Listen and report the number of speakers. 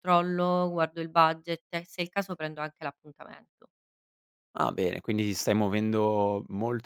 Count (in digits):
2